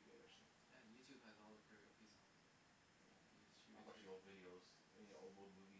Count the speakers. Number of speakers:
two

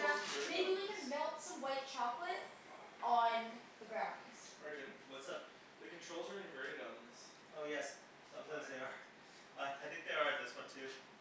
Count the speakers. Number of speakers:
three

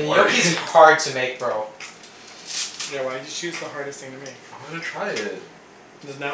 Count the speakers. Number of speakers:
three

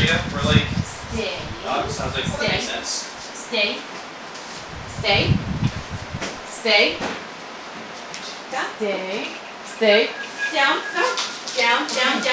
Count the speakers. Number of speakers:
three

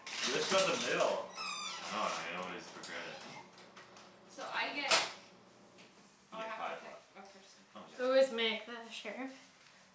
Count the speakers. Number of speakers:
four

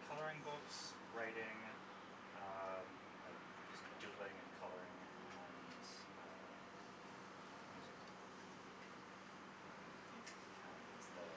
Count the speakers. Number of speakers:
one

